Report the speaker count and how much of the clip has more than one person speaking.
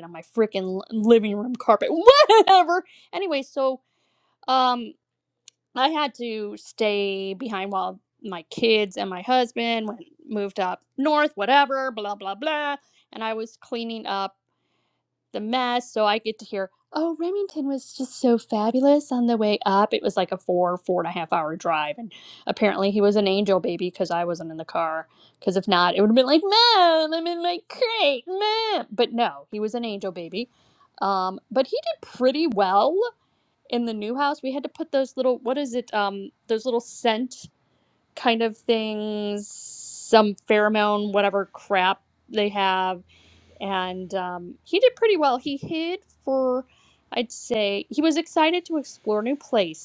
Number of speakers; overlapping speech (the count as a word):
one, no overlap